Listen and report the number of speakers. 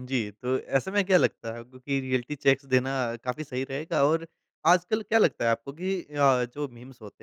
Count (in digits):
1